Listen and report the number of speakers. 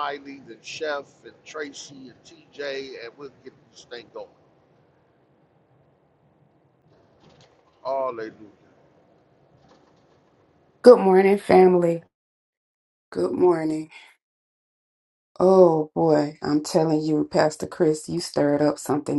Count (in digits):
2